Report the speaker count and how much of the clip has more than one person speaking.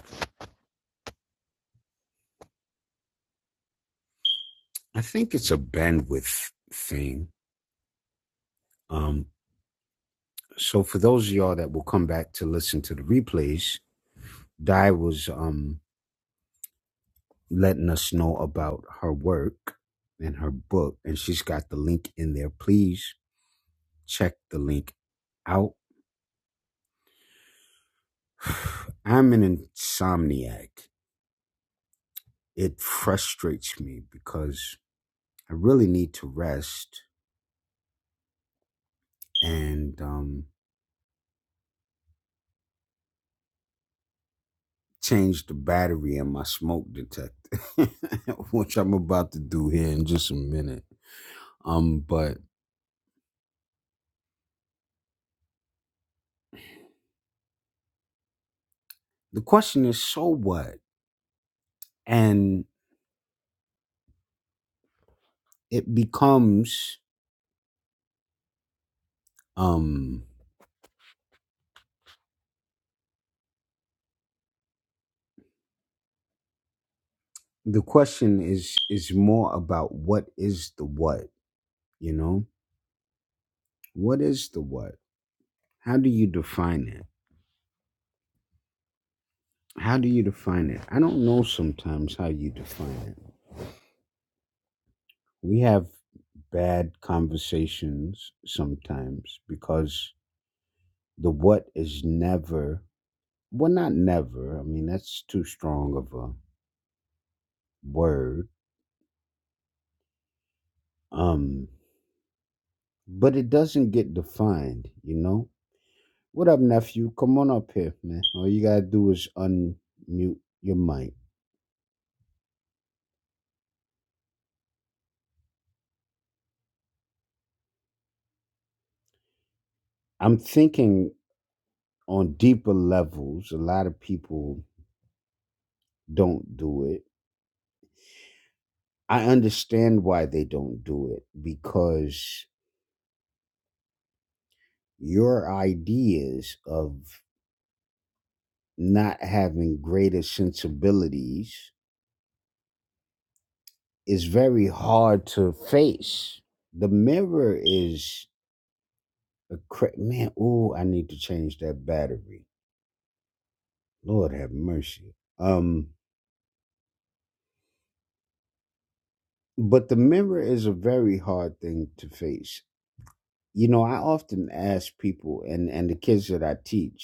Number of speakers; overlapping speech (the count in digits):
1, no overlap